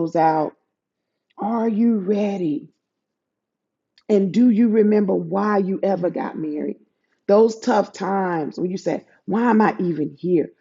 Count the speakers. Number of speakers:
1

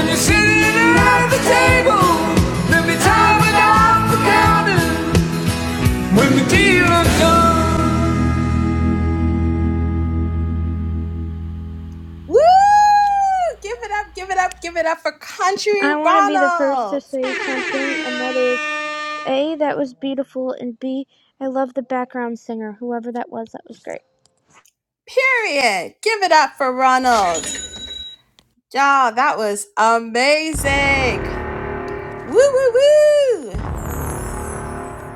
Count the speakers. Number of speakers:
3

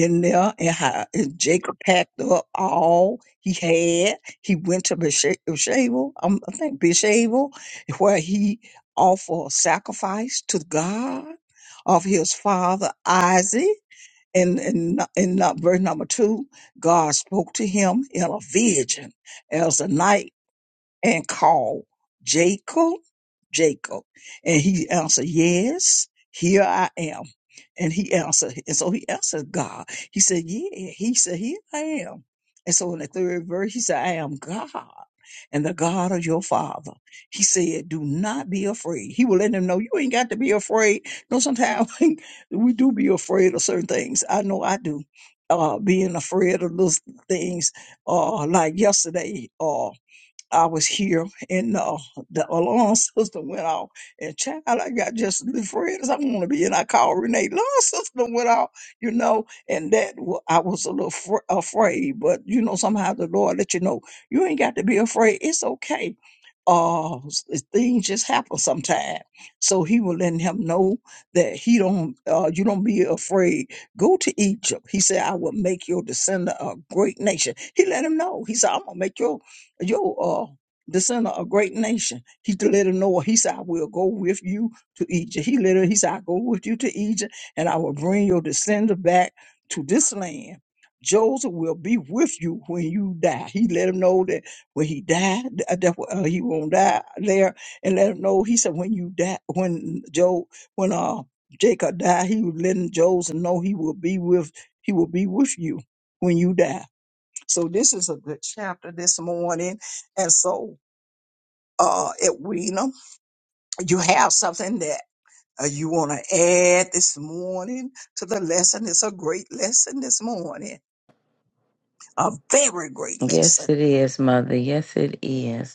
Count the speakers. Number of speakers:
2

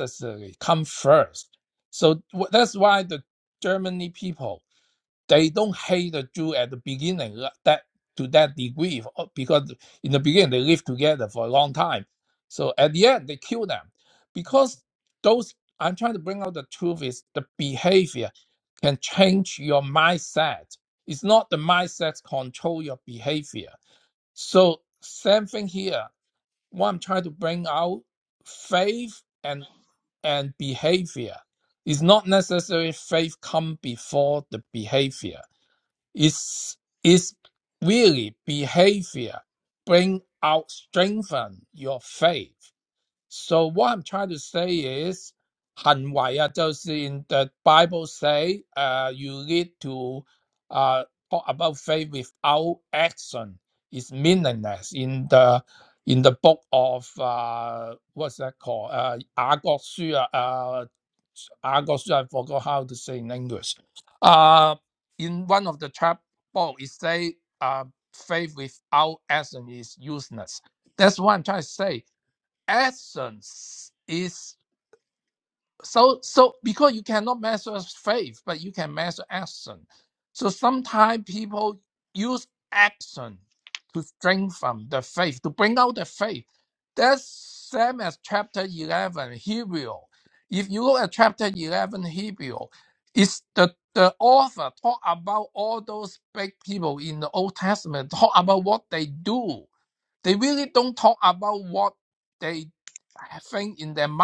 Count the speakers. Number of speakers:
1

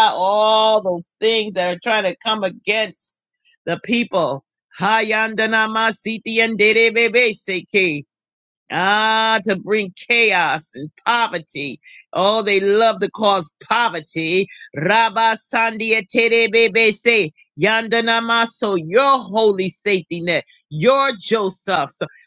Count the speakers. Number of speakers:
1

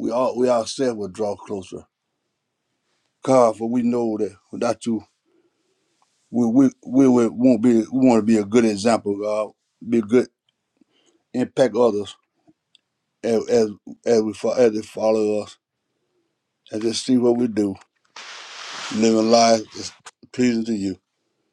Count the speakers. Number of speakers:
1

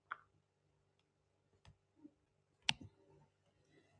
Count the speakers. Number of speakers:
0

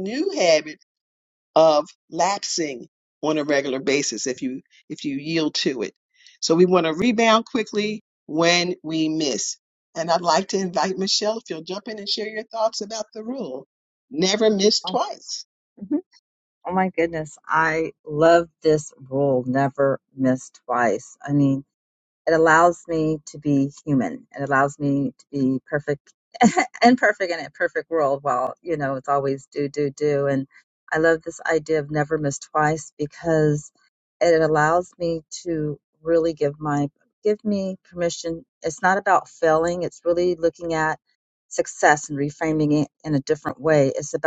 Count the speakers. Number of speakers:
2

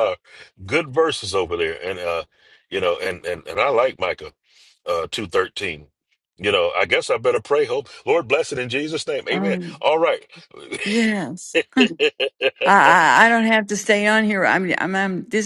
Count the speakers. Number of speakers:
2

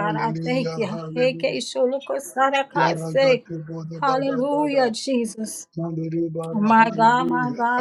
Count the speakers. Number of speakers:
2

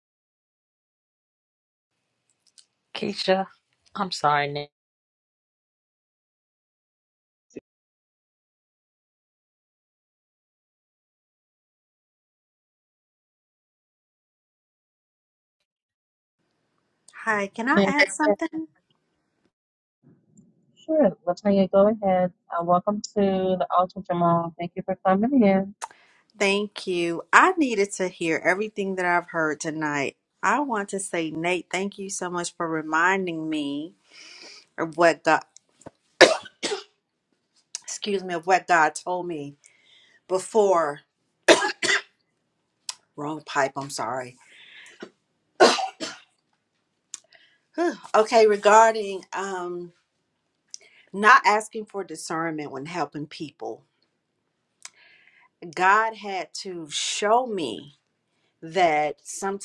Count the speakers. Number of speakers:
3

